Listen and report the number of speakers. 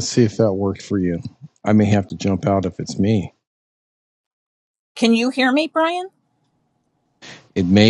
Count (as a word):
two